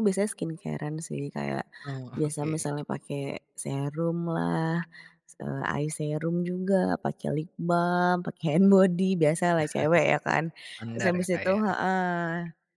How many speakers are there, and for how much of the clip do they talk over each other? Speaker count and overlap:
2, about 10%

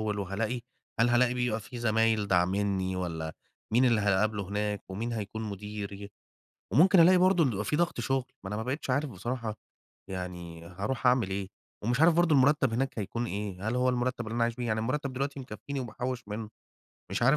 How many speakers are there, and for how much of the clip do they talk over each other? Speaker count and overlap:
1, no overlap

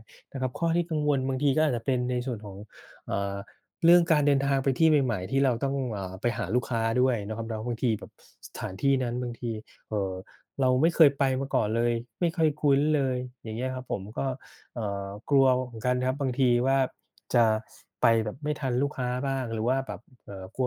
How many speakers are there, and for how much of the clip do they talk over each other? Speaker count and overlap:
1, no overlap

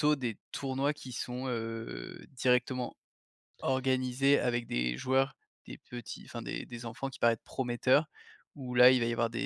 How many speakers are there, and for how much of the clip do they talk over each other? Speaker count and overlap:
1, no overlap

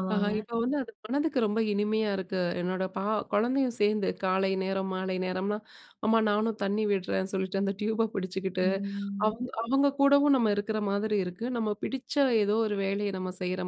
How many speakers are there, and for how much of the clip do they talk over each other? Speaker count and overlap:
2, about 4%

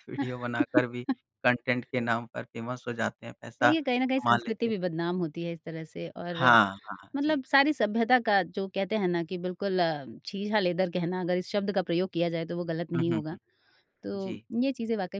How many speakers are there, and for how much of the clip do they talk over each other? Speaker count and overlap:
2, about 11%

